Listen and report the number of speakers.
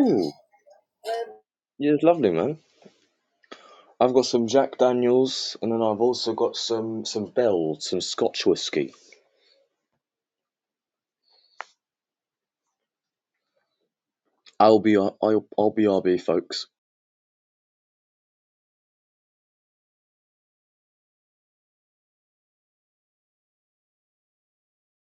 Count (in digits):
1